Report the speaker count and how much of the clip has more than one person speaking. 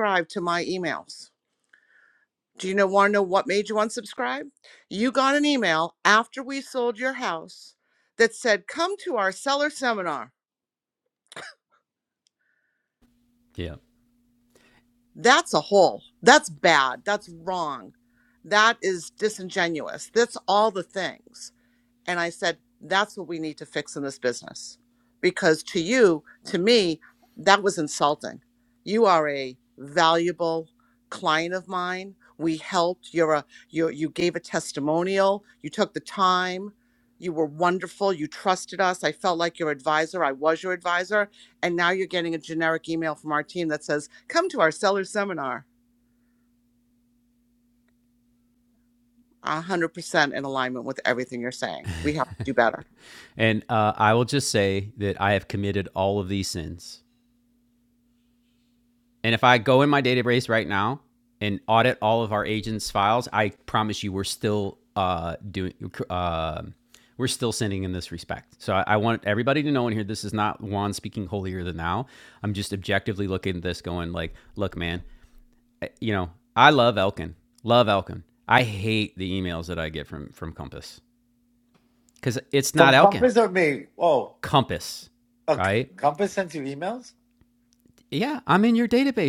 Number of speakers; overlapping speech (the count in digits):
3, about 1%